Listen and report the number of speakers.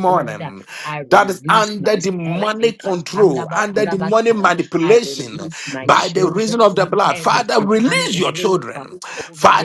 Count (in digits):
2